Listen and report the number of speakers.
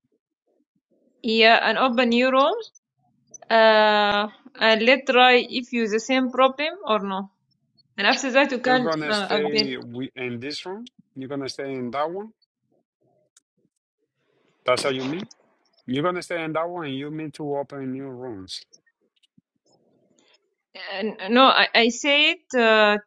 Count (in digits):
2